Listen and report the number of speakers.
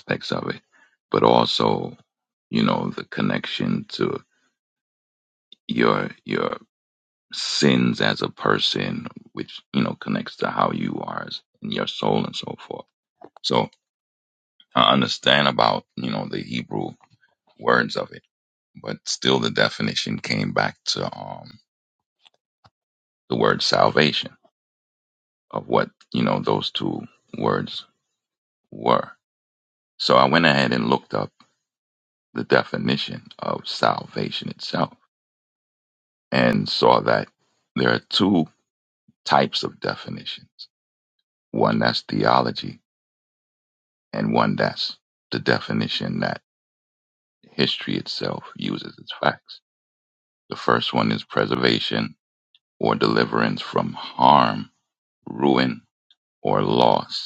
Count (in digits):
1